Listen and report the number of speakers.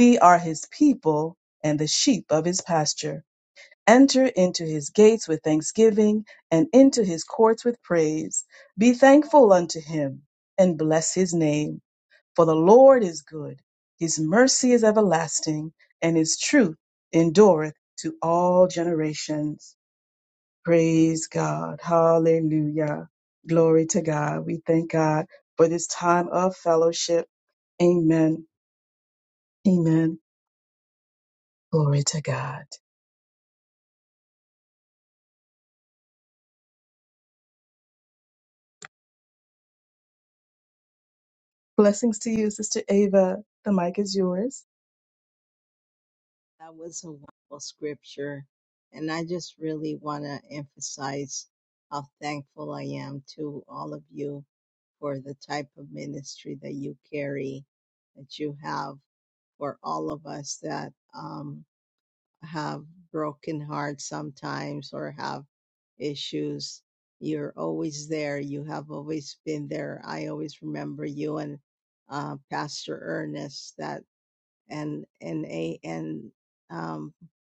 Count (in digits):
2